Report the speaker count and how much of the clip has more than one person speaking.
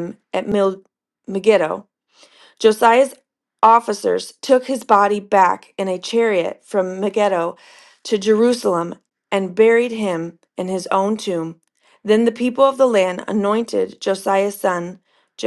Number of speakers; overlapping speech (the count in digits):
1, no overlap